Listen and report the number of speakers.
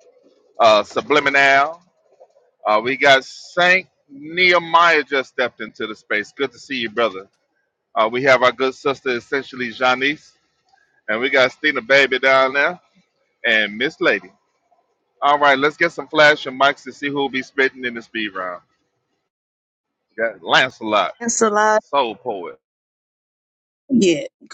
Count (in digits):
2